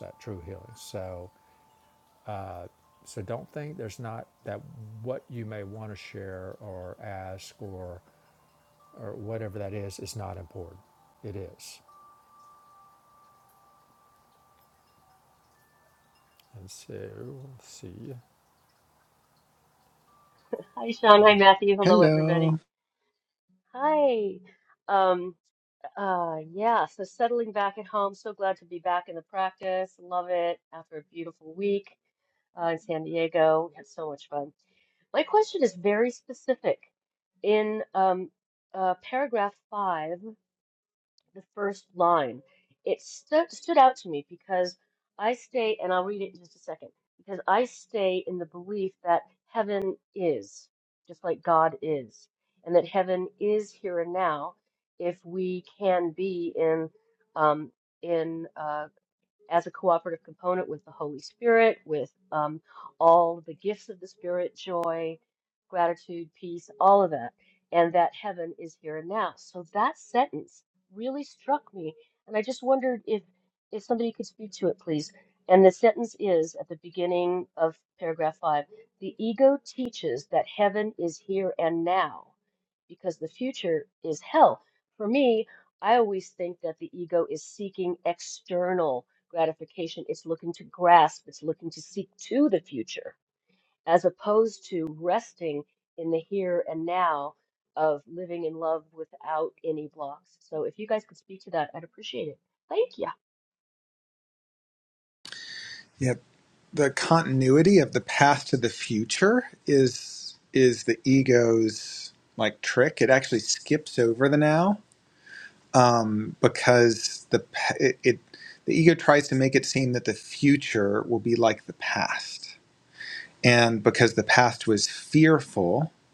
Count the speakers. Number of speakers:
3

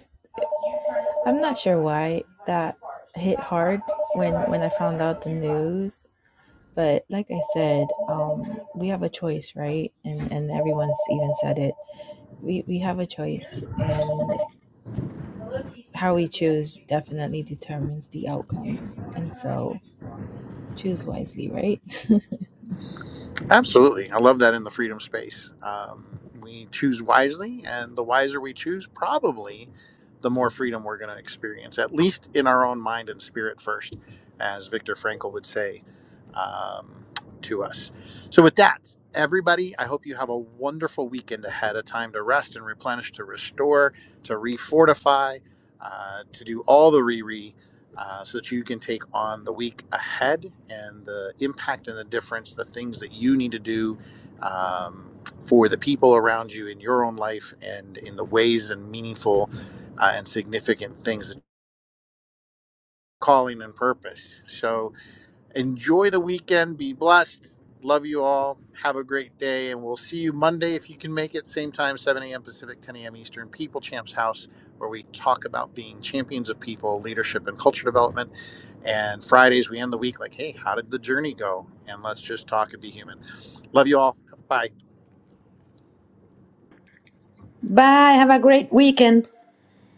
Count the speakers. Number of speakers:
3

